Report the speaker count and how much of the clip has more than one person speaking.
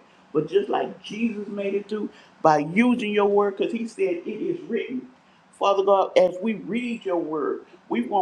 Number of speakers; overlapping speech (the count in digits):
1, no overlap